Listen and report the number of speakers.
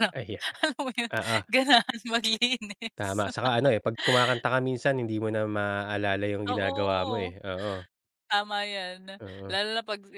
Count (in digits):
2